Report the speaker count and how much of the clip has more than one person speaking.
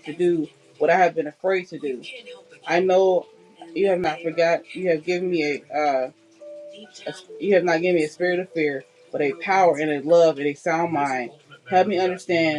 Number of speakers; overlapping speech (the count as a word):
one, no overlap